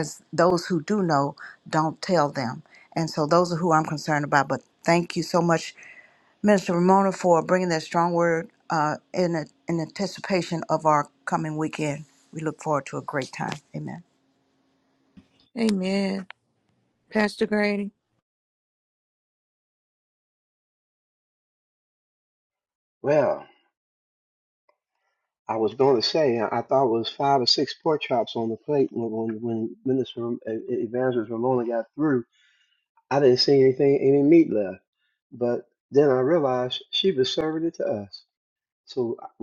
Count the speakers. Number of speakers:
3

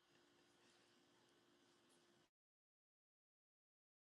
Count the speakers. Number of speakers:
0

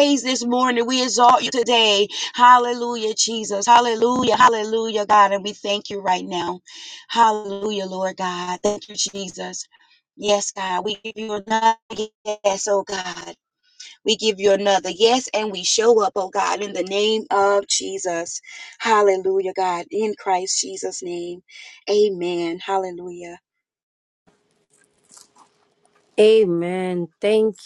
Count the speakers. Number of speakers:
2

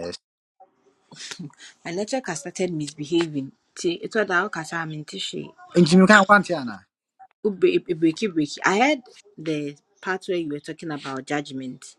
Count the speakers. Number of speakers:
2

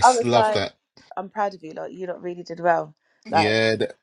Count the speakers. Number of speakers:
2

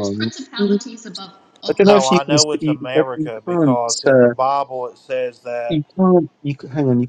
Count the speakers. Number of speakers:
3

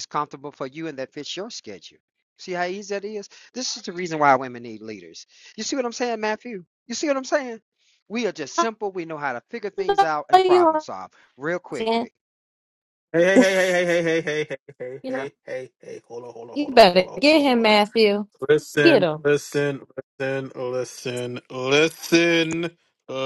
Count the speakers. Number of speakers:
3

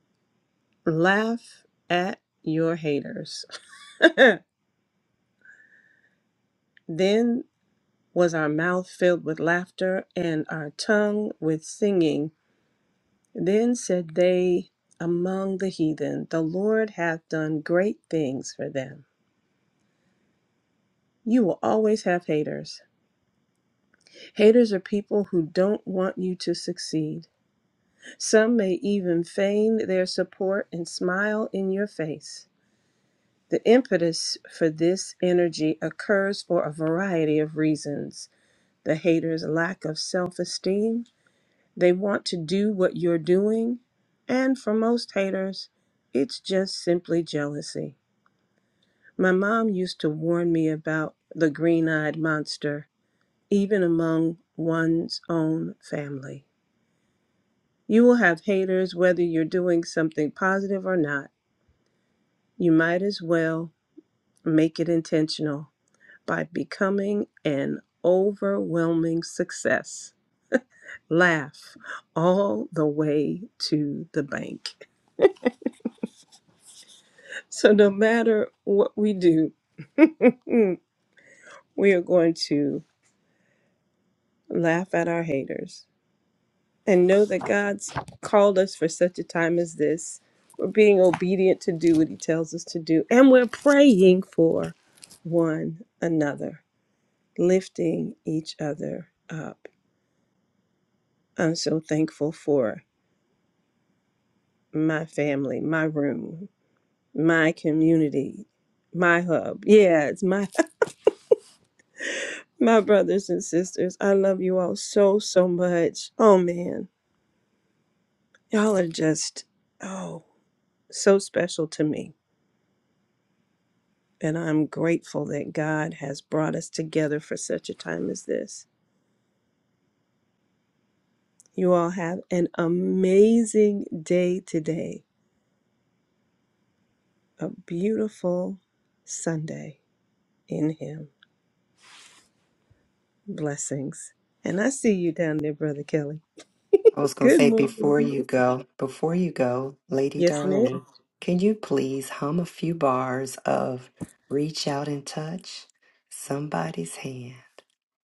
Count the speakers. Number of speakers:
2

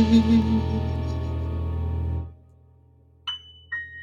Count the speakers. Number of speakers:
0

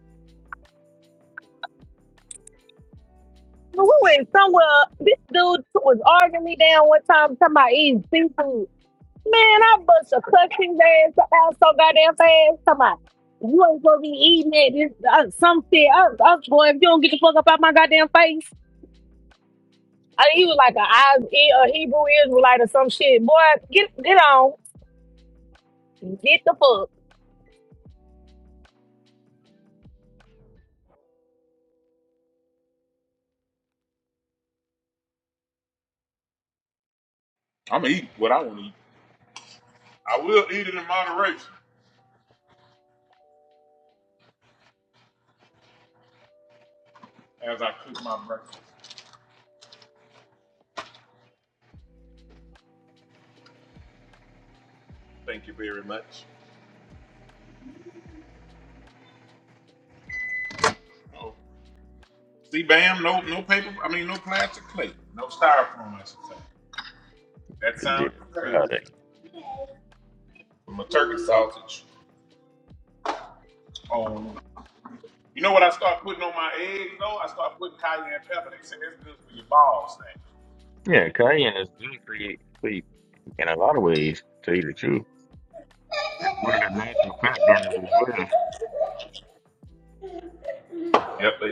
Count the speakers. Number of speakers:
3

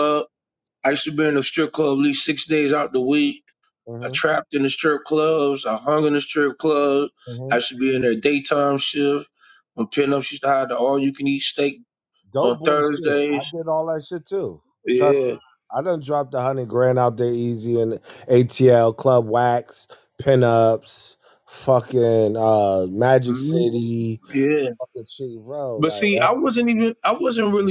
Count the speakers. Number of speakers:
2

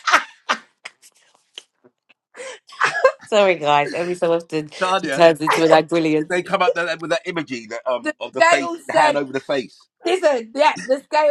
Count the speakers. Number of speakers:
3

